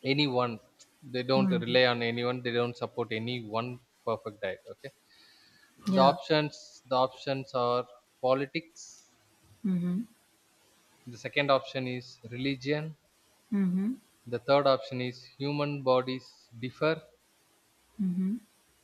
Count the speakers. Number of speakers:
2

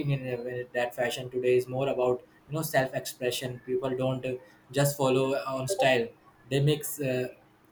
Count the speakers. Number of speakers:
1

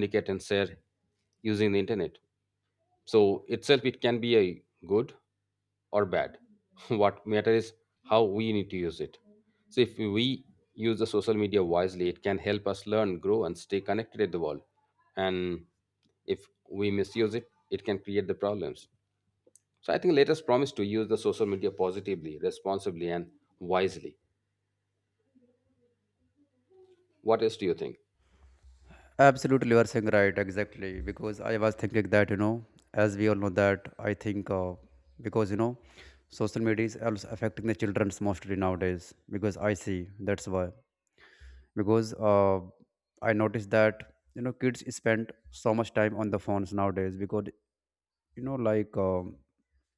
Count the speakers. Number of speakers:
2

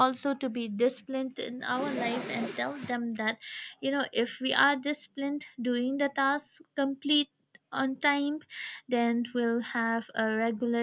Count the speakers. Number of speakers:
1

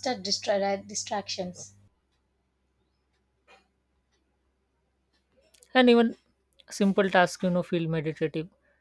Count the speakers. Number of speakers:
2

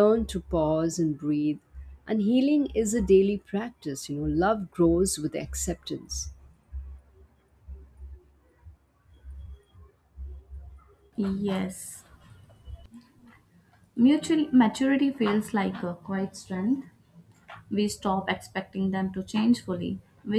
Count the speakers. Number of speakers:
2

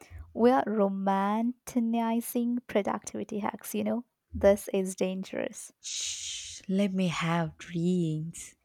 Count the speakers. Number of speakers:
2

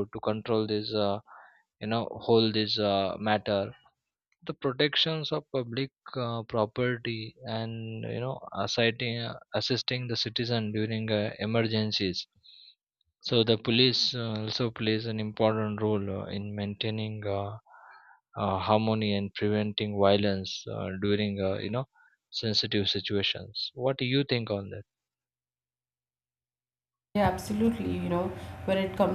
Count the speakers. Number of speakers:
2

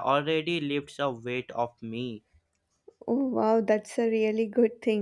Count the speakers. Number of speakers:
2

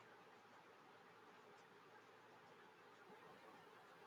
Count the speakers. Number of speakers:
0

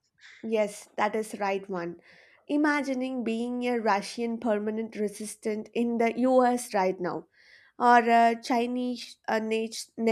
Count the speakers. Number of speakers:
1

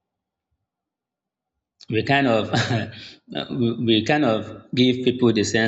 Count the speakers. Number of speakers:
1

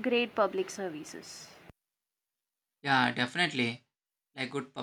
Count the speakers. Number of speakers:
2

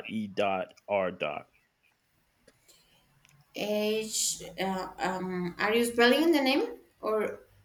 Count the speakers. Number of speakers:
2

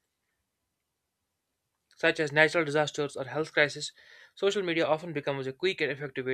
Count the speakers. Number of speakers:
1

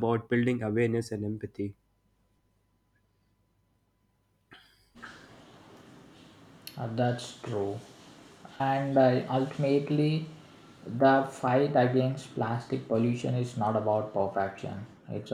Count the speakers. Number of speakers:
2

